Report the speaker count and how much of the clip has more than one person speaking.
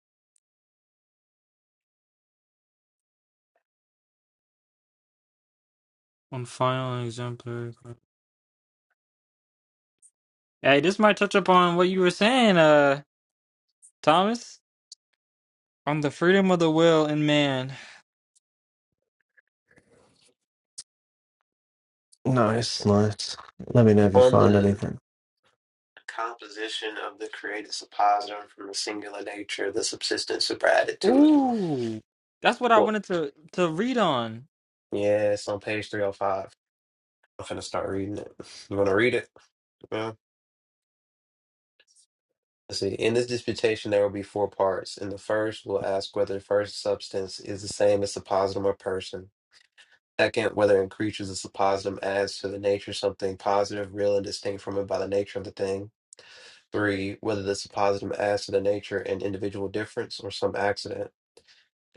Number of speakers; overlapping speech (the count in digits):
3, about 2%